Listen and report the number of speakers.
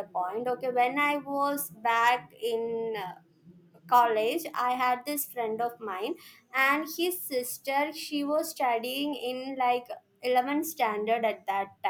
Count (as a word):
one